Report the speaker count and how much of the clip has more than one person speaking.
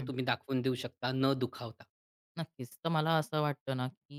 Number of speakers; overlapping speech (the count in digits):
2, about 2%